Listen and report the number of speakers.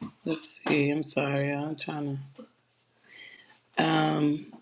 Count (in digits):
1